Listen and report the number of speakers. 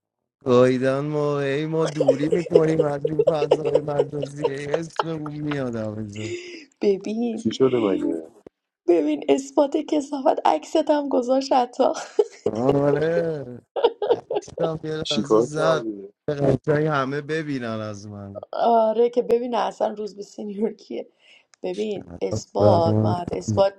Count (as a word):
three